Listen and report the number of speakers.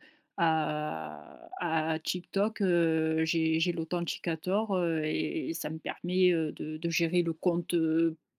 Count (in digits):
1